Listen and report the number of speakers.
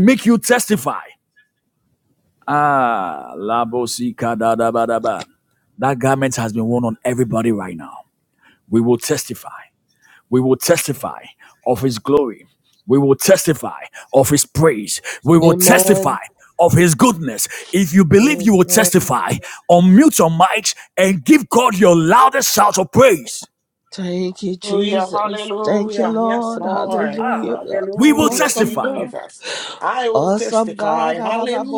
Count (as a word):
three